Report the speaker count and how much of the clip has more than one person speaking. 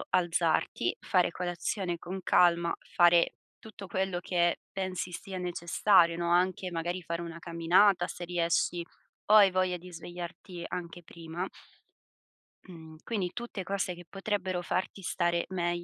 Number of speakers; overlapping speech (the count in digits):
1, no overlap